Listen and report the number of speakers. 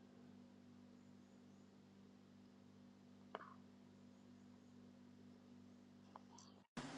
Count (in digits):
0